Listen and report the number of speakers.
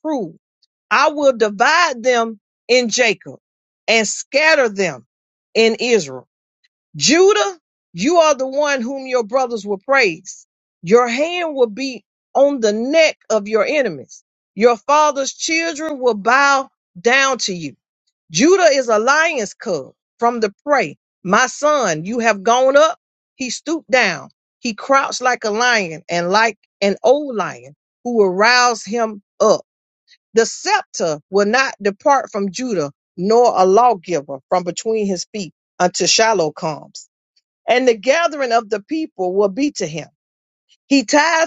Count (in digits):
1